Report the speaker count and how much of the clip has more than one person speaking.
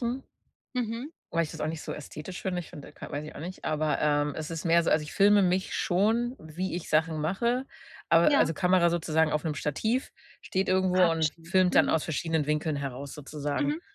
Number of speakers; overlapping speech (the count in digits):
2, about 10%